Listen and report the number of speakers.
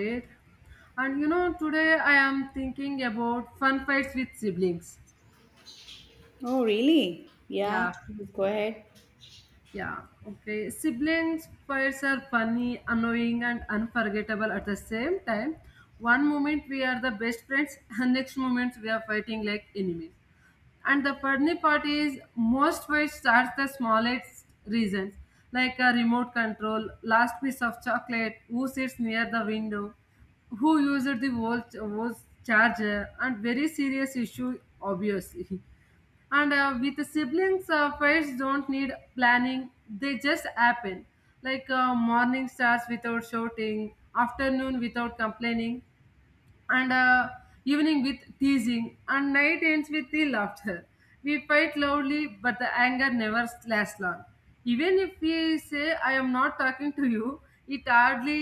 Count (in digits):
2